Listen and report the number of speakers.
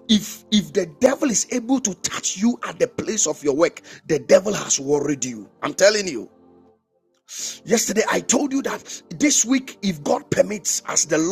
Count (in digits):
1